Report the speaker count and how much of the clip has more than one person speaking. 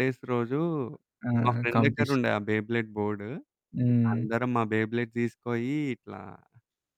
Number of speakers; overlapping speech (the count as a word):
two, about 9%